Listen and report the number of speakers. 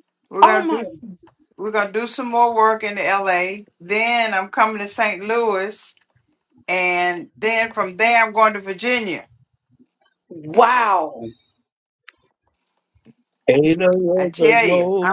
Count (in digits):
3